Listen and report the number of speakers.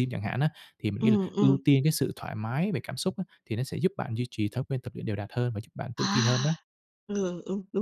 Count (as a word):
two